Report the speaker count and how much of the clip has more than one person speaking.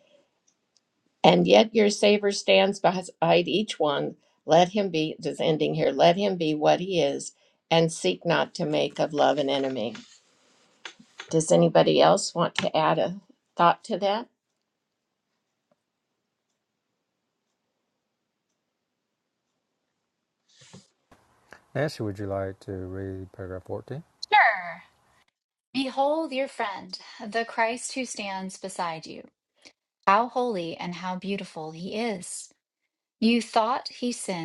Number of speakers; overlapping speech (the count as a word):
three, no overlap